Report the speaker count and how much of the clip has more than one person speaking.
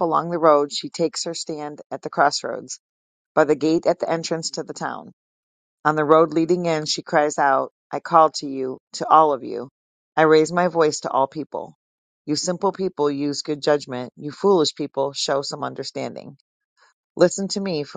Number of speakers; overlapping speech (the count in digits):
1, no overlap